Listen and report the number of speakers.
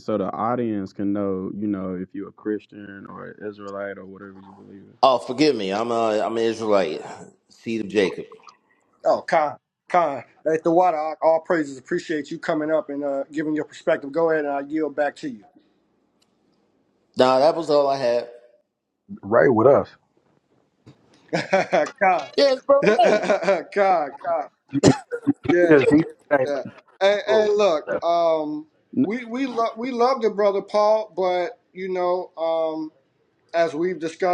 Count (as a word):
four